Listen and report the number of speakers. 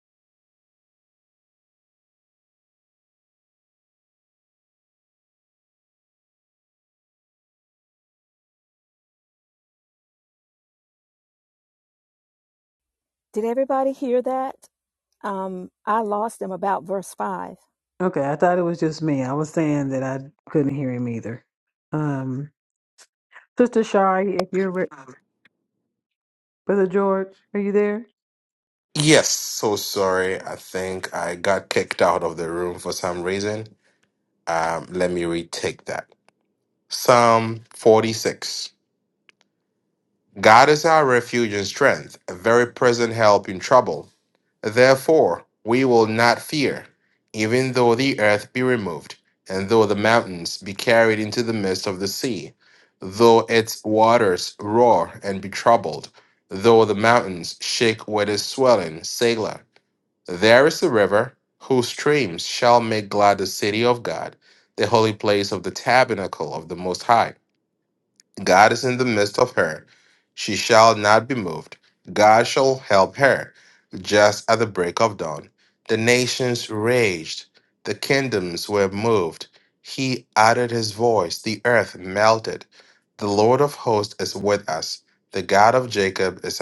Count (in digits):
3